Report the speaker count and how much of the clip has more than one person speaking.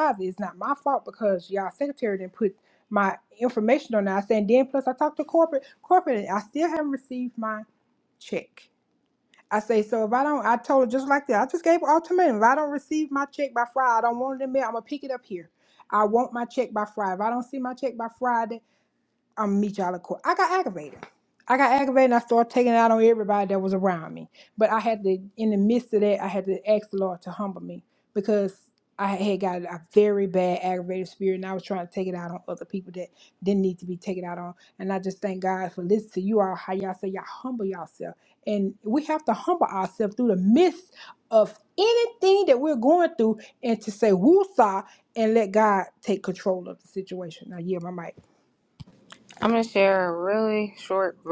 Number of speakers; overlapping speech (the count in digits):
2, no overlap